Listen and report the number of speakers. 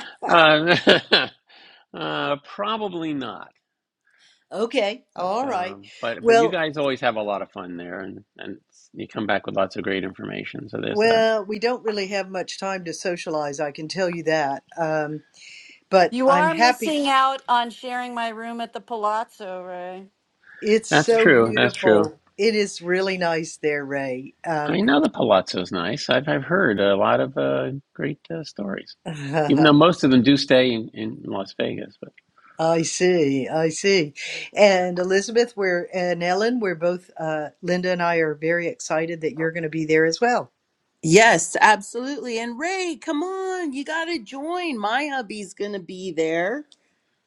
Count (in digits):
4